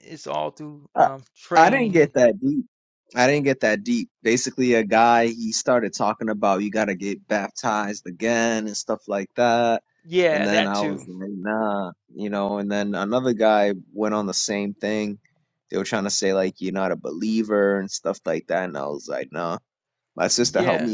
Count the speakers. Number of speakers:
2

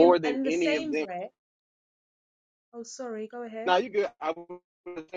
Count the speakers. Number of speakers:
2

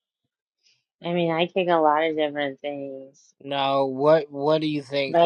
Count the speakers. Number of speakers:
2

